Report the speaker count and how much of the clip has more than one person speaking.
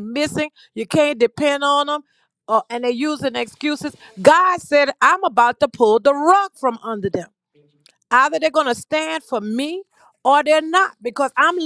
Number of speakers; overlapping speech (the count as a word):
one, no overlap